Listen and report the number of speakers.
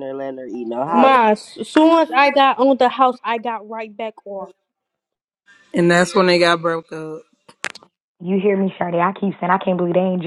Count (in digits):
4